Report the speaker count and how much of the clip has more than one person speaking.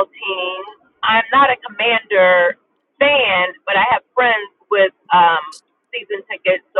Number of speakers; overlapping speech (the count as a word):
one, no overlap